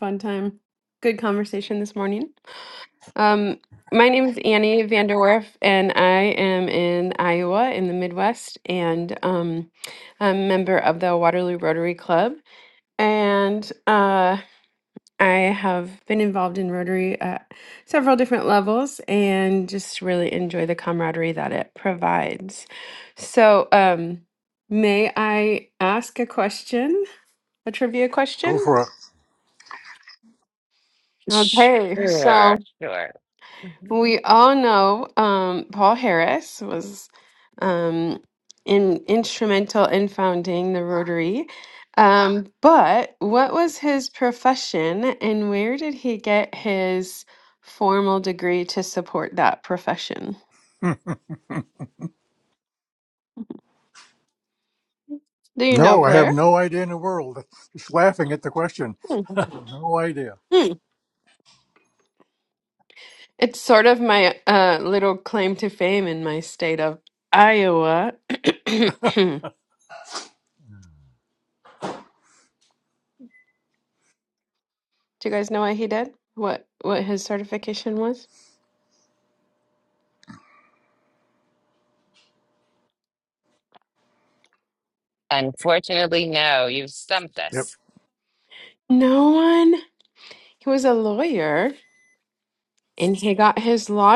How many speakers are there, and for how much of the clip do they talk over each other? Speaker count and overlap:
three, about 2%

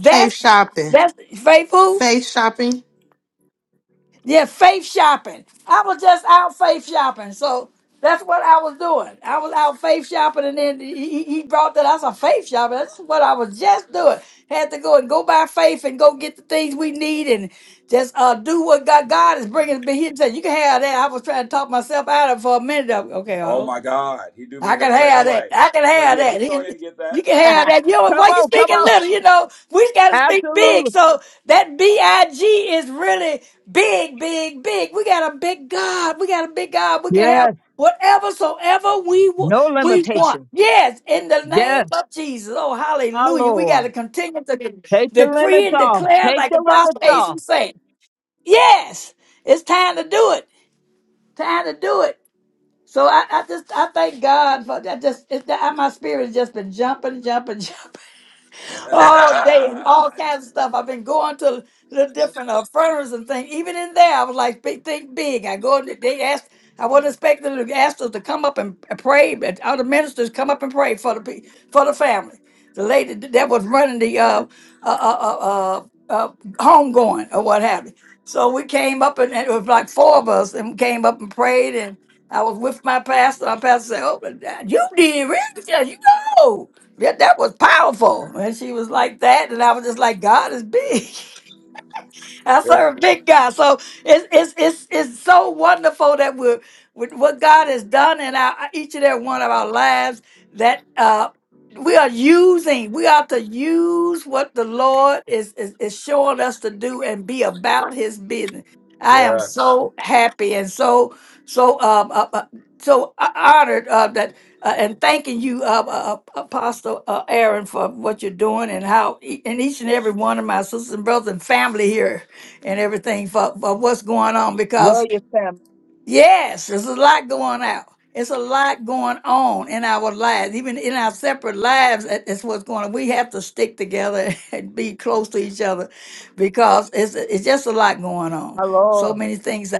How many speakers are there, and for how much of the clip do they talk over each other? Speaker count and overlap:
four, about 7%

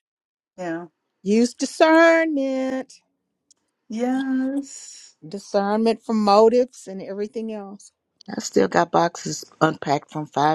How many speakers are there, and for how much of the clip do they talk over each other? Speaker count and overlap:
three, no overlap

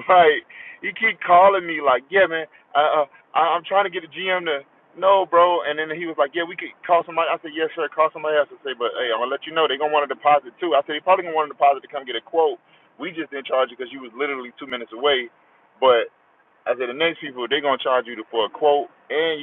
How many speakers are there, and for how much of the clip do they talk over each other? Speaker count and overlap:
one, no overlap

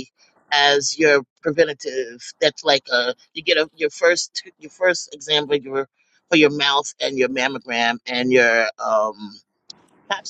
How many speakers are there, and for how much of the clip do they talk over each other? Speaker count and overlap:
one, no overlap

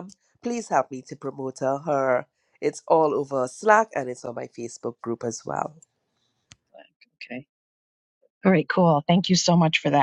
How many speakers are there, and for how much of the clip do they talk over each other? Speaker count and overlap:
two, no overlap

